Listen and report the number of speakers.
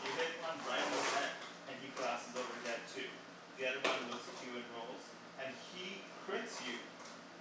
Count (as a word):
one